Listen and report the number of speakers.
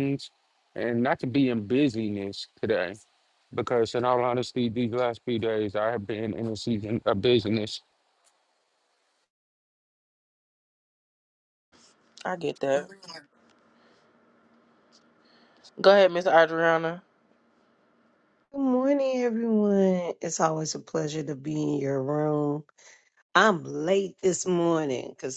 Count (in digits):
3